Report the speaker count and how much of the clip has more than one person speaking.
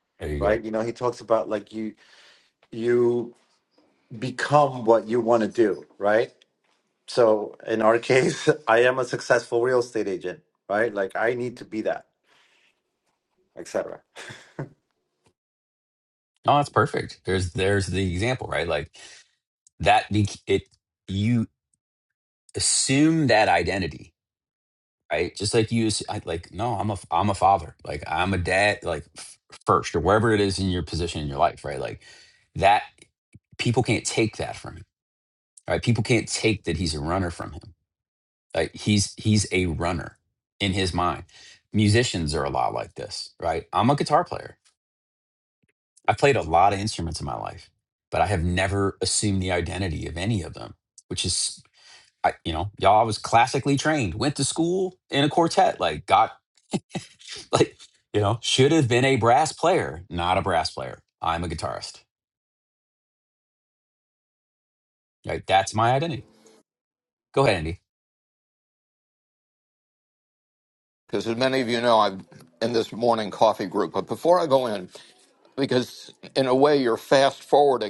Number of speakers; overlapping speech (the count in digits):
3, under 1%